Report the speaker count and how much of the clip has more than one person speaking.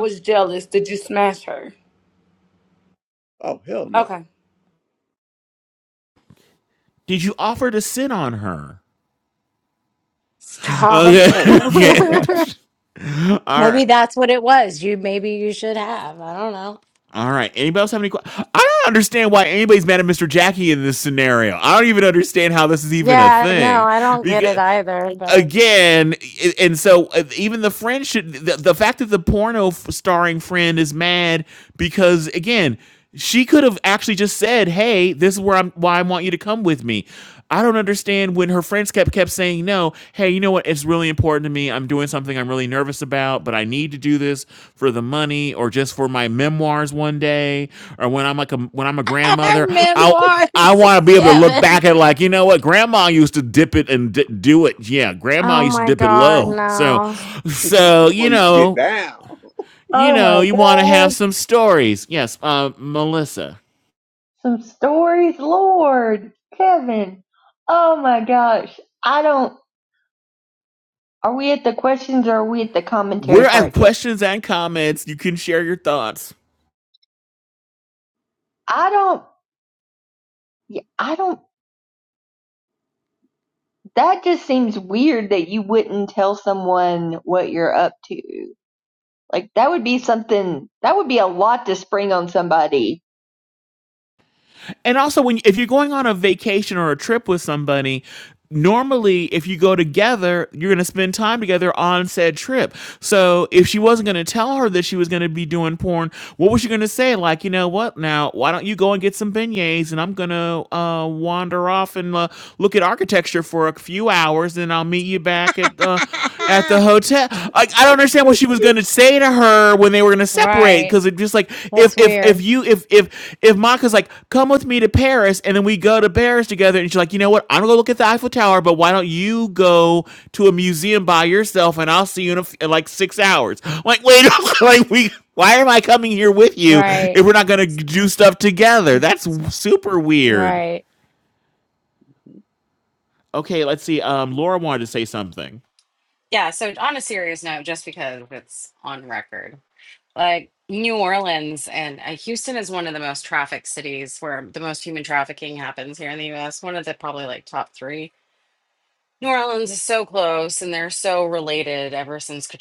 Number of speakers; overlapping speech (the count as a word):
six, about 7%